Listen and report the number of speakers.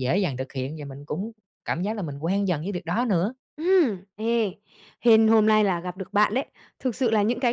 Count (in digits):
2